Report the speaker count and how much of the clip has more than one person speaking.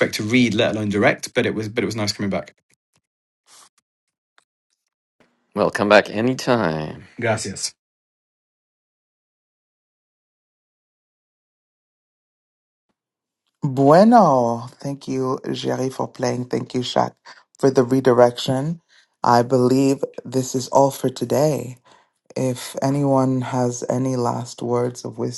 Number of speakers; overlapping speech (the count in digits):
3, no overlap